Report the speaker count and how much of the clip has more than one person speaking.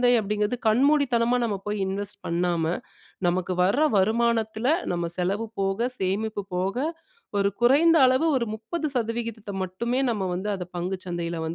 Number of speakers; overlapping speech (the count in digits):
1, no overlap